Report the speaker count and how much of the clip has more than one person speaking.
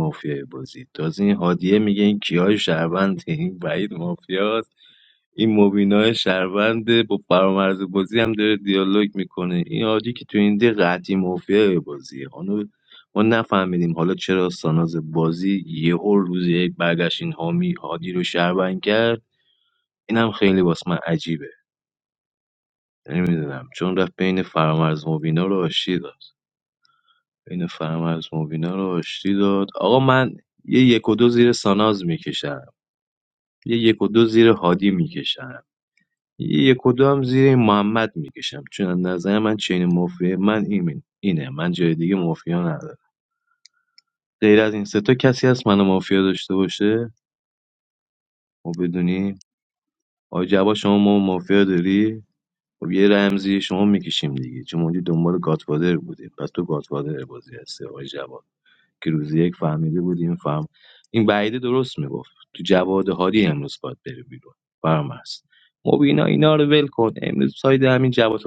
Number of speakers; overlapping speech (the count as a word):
one, no overlap